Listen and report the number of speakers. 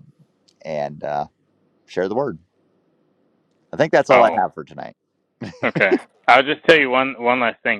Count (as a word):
two